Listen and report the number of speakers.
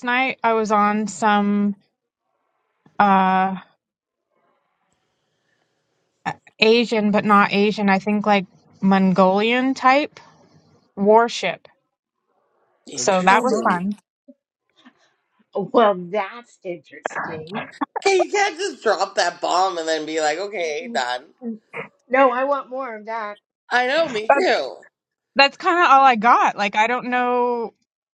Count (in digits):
3